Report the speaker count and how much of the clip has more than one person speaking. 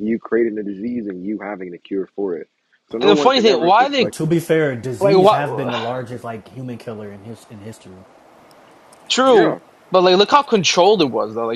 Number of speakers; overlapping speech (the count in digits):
3, about 21%